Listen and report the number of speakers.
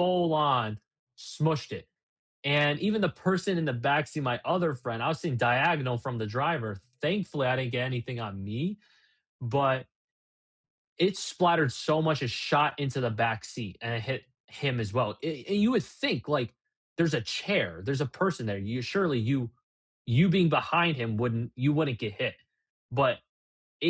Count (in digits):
1